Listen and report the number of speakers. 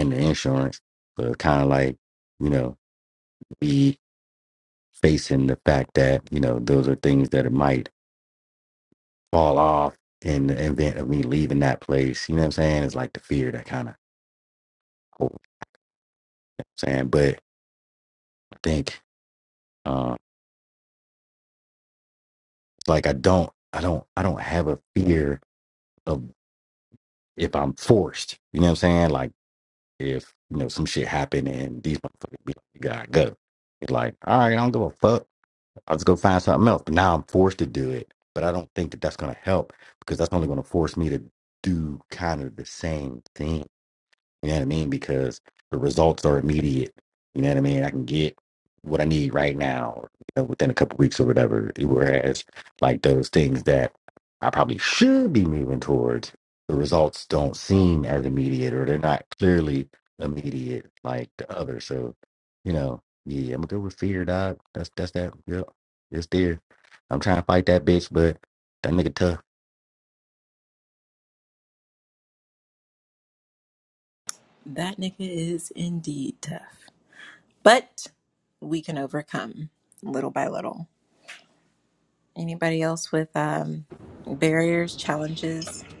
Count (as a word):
two